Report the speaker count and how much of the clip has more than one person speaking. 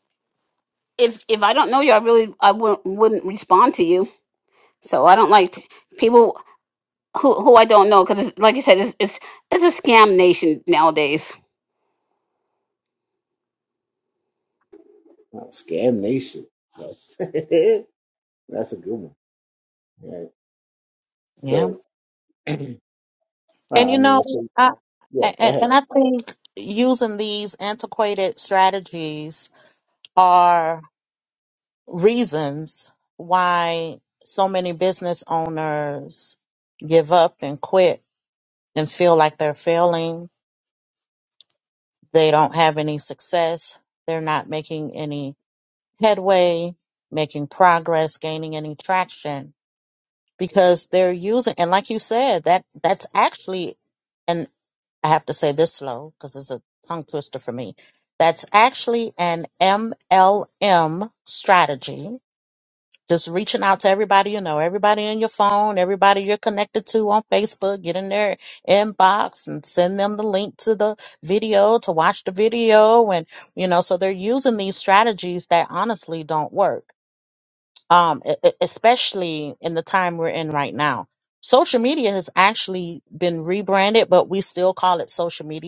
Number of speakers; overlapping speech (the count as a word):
three, about 2%